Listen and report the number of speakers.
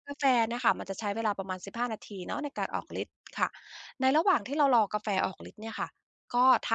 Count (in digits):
1